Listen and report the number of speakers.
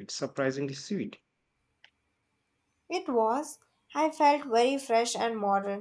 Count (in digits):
2